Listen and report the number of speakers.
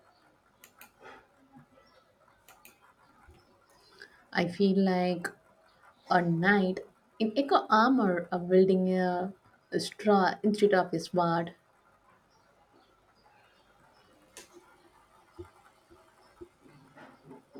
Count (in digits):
1